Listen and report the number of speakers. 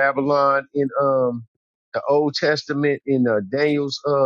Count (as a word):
one